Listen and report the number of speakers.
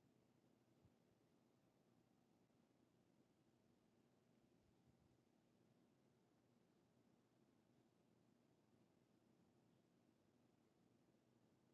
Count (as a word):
zero